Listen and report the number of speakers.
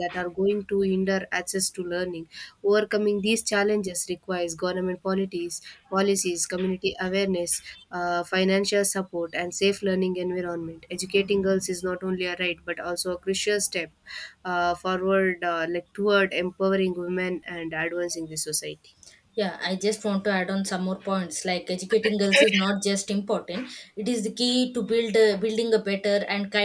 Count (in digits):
2